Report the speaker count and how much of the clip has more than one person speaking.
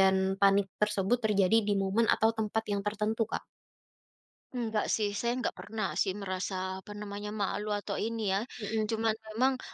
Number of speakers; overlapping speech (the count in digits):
2, no overlap